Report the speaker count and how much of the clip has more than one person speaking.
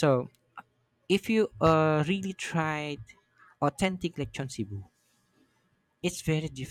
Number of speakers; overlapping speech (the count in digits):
1, no overlap